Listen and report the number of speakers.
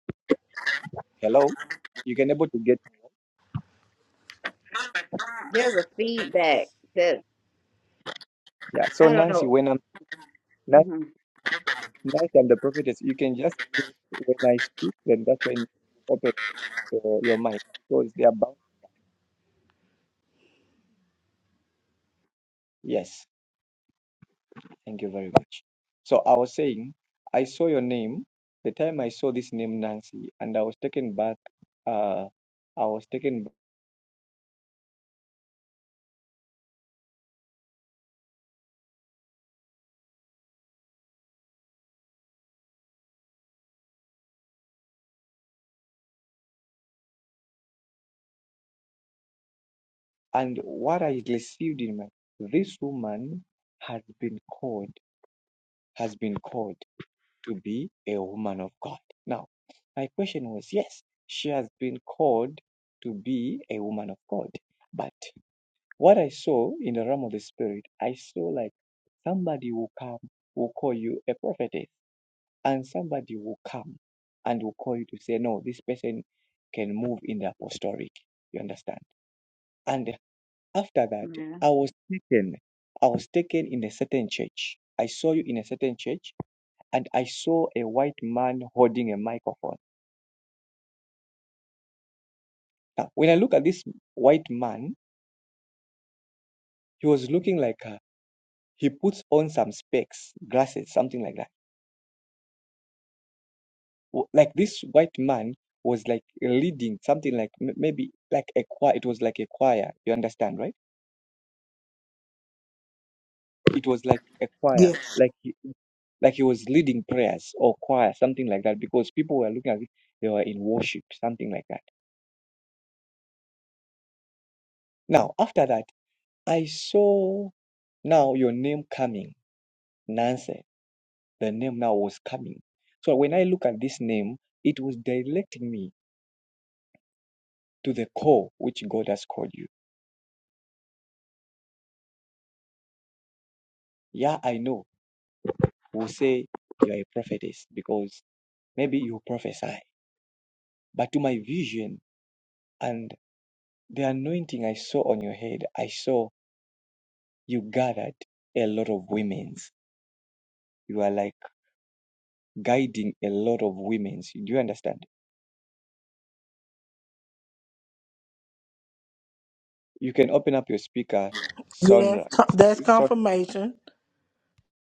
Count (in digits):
3